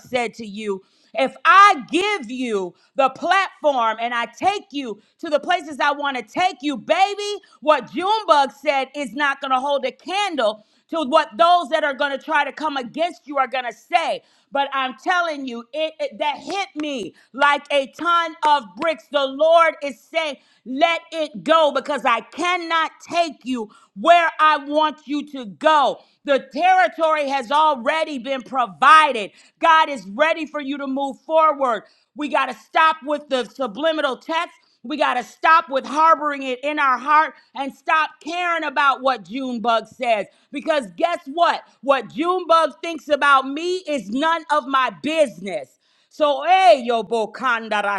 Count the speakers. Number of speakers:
1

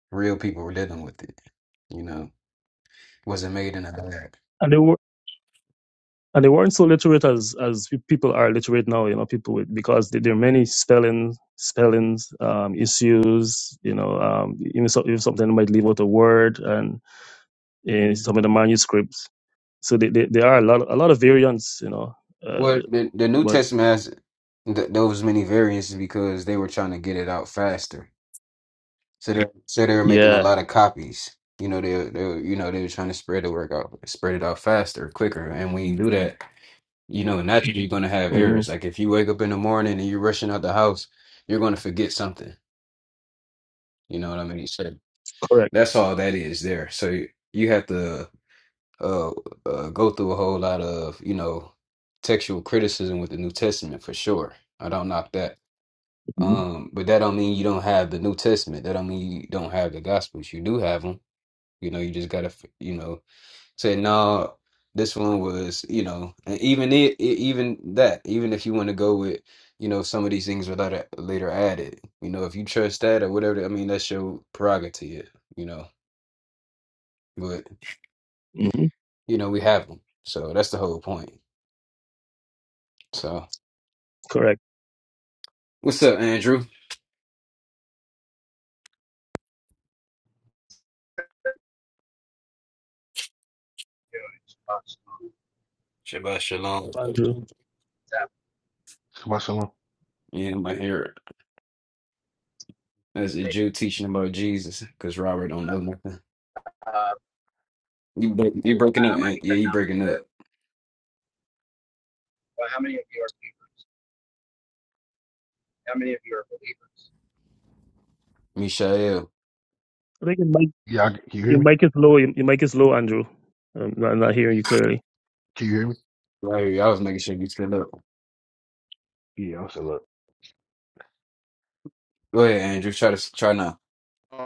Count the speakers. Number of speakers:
4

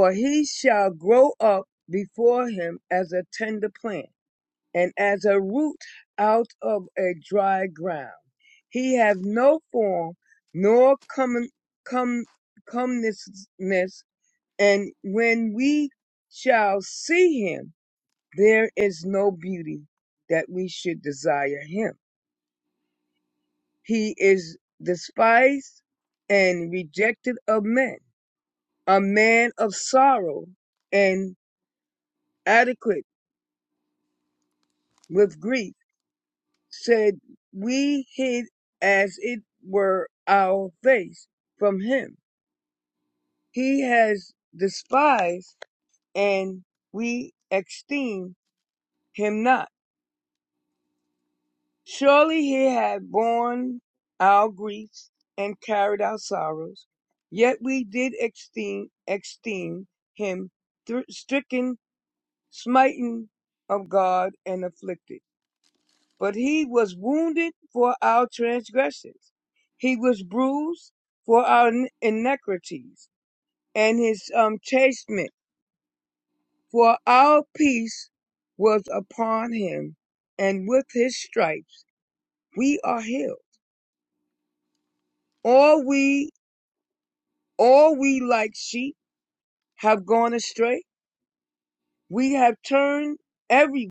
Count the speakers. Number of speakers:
1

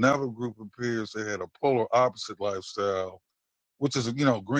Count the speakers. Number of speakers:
1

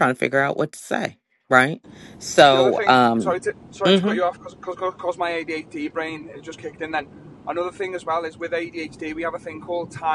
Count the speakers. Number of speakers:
2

